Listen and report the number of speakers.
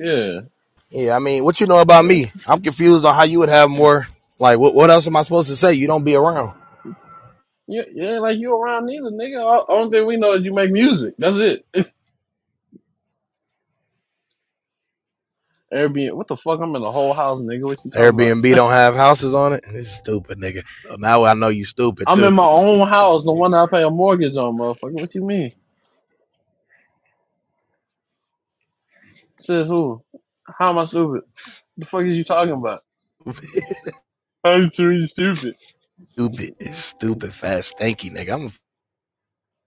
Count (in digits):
2